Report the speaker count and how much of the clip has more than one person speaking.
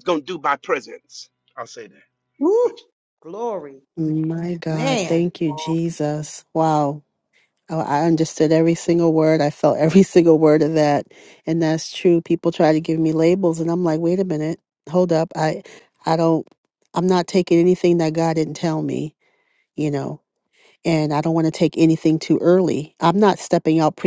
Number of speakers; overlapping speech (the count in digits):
3, about 3%